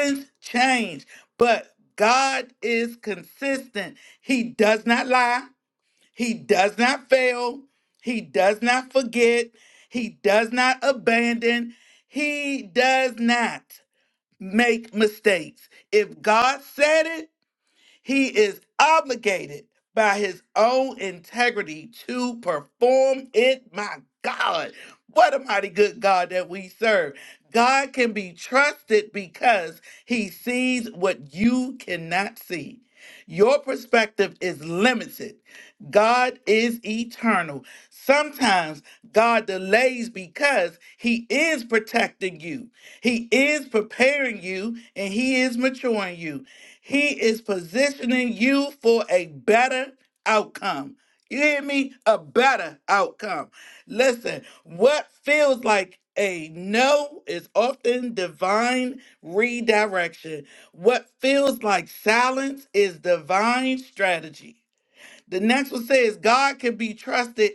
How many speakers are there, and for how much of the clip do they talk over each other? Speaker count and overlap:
one, no overlap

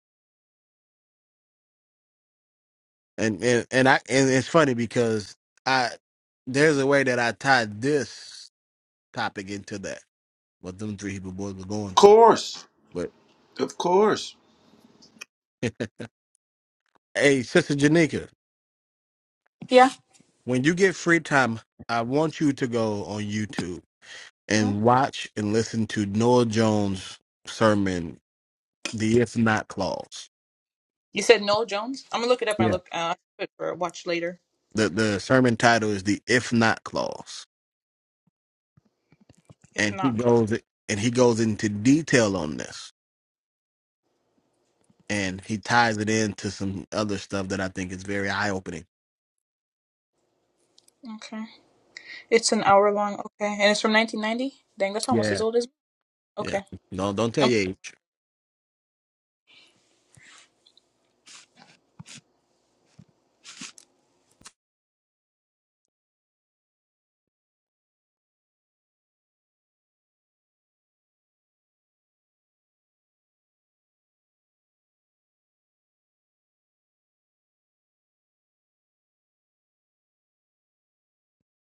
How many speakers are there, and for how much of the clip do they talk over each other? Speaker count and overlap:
three, about 2%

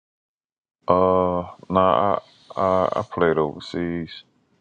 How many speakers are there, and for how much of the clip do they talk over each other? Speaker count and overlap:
one, no overlap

